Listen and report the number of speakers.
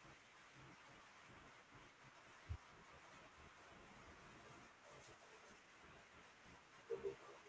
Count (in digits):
0